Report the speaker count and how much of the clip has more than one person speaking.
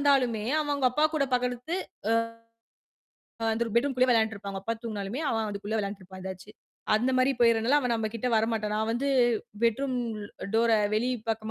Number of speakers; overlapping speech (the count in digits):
1, no overlap